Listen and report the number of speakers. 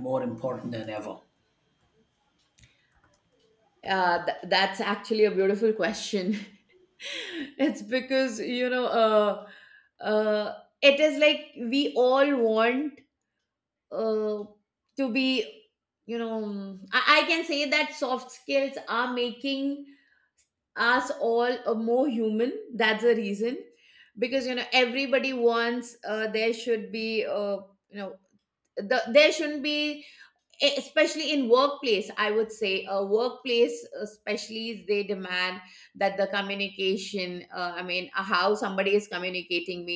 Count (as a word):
two